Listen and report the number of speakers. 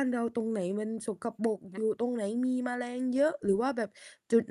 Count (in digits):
1